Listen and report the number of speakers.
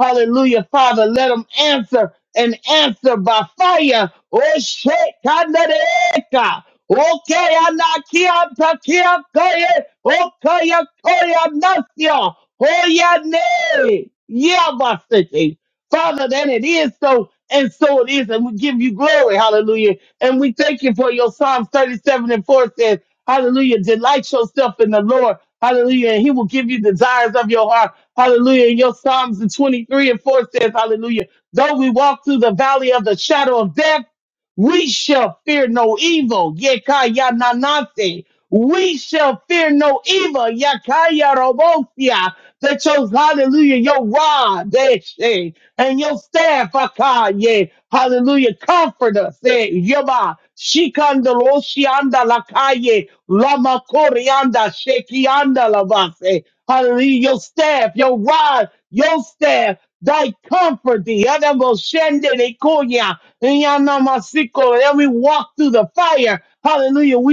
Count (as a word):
one